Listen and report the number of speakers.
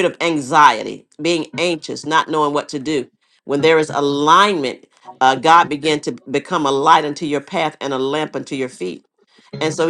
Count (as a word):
one